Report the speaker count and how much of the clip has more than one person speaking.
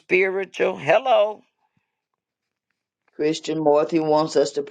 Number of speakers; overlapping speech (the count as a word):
two, no overlap